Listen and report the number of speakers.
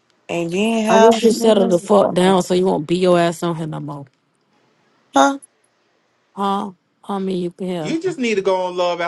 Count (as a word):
three